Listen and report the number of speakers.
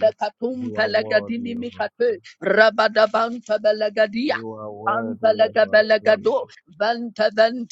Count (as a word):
two